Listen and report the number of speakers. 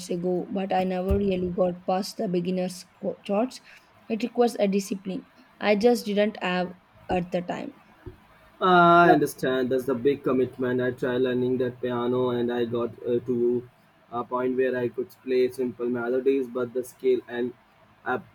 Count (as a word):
two